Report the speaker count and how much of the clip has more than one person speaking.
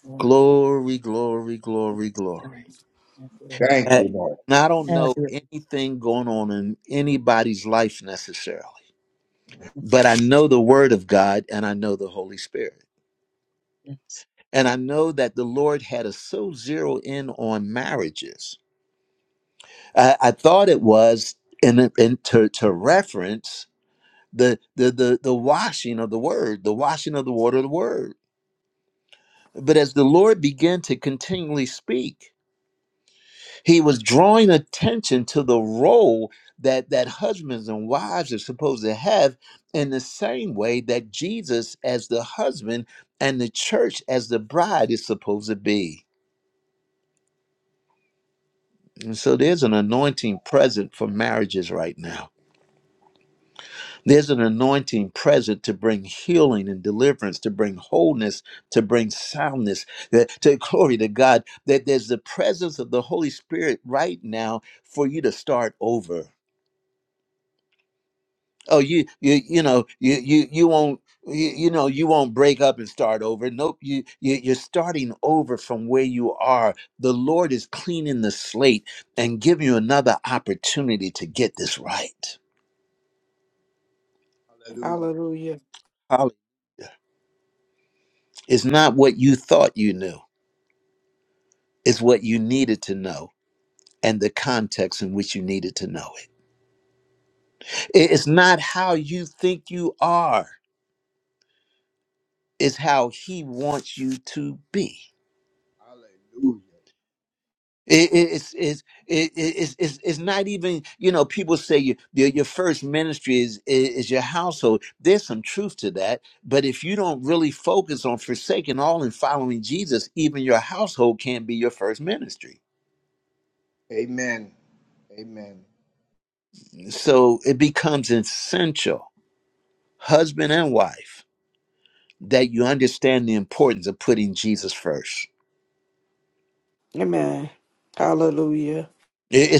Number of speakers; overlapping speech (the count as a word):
four, about 1%